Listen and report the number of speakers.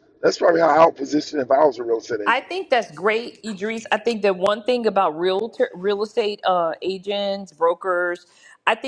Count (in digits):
2